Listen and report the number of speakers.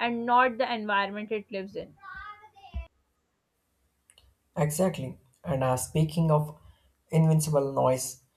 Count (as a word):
two